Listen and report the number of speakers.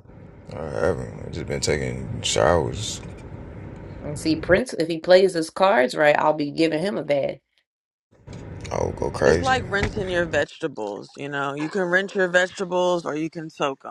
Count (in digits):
3